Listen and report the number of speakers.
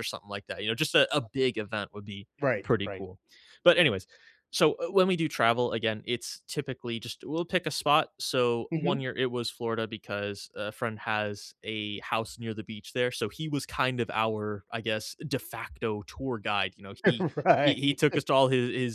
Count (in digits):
2